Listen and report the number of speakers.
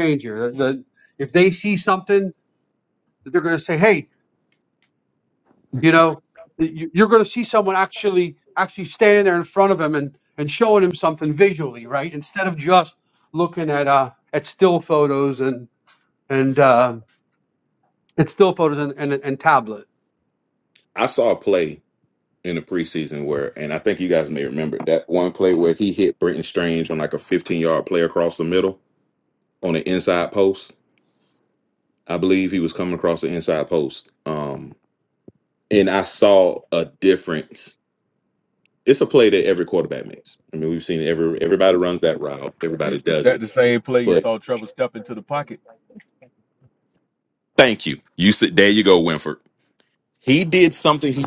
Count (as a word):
three